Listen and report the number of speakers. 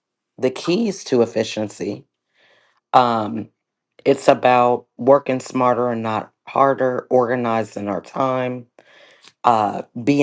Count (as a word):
one